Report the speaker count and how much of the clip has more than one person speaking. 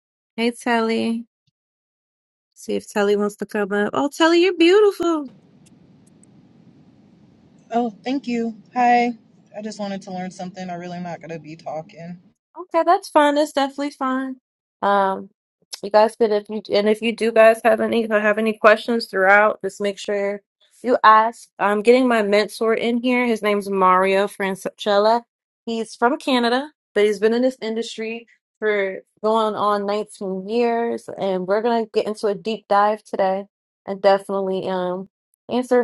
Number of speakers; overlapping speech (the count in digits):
2, no overlap